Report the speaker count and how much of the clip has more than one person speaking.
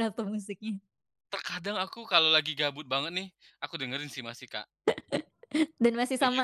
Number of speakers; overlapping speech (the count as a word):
two, about 4%